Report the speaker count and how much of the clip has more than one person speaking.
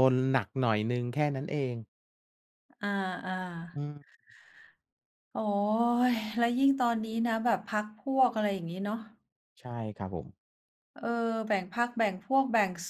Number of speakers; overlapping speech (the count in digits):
2, no overlap